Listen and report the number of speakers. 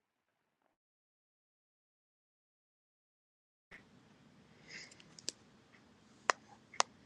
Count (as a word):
zero